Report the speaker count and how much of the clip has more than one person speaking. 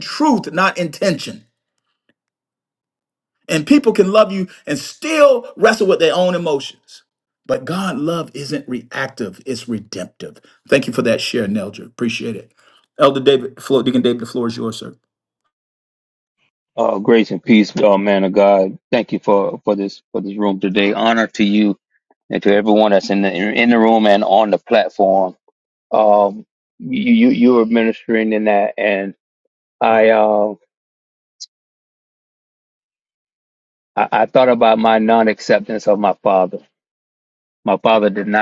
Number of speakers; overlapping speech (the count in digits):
2, no overlap